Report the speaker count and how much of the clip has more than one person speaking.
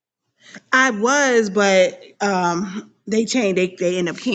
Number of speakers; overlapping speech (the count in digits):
1, no overlap